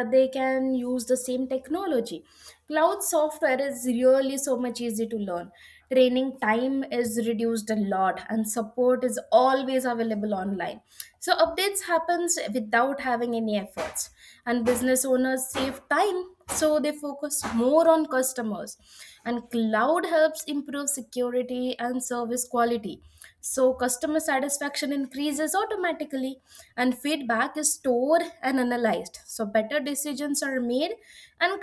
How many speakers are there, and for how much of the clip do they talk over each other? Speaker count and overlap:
one, no overlap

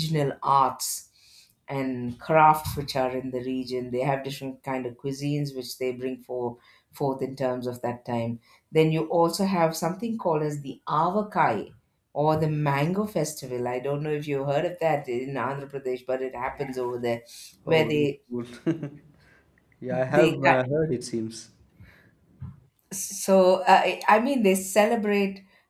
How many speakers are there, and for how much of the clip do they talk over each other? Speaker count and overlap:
two, about 4%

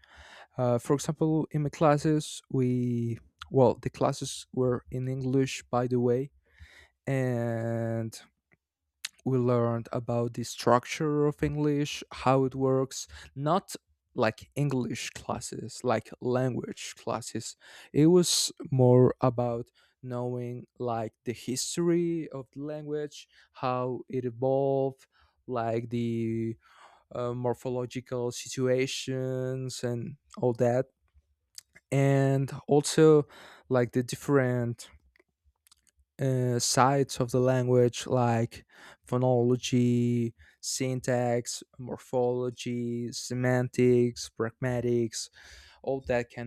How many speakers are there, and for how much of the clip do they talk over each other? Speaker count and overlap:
one, no overlap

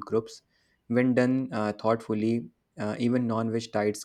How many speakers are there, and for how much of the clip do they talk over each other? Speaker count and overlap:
one, no overlap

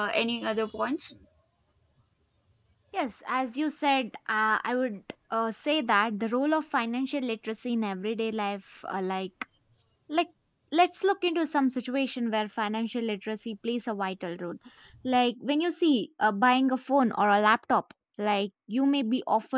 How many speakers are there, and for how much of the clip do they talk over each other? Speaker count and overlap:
two, no overlap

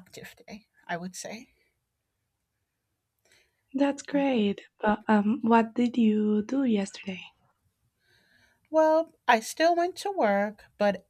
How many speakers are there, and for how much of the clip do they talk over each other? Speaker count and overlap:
two, about 1%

